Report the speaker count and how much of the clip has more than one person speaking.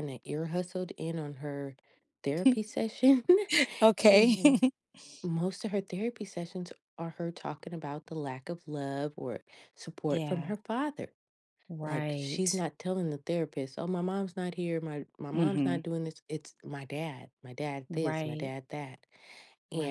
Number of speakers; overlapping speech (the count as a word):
two, about 14%